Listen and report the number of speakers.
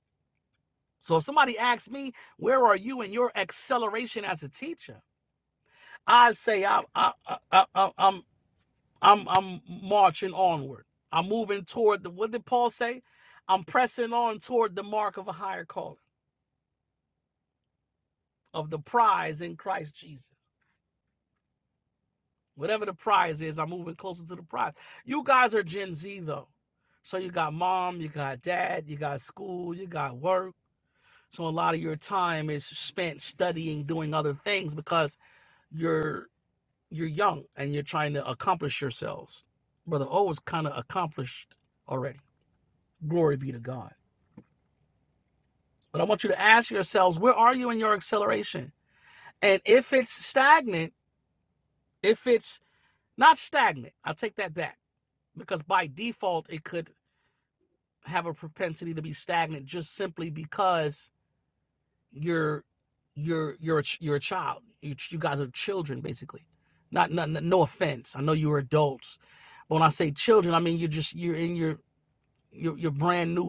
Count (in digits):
1